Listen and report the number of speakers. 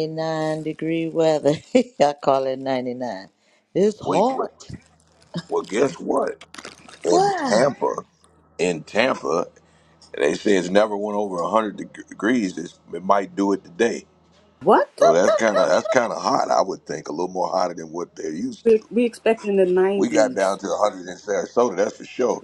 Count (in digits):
3